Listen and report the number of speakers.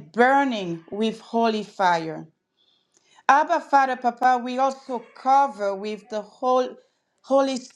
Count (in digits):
1